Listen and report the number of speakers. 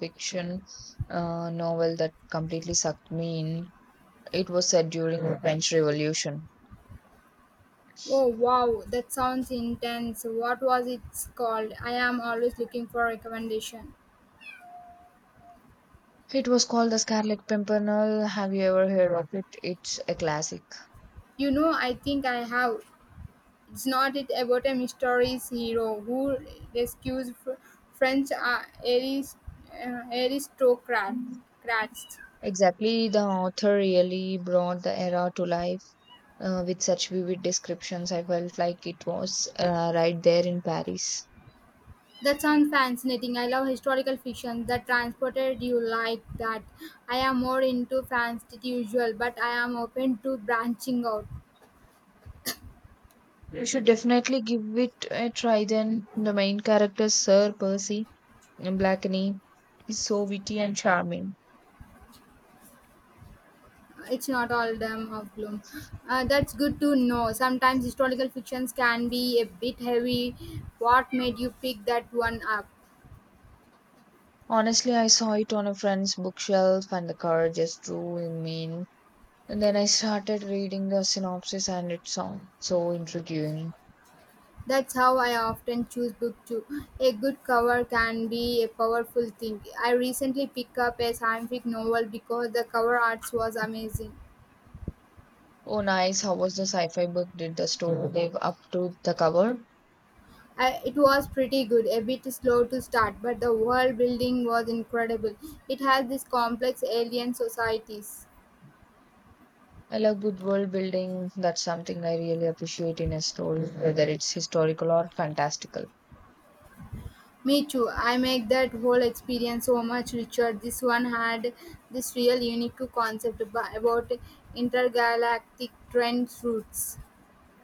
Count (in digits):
2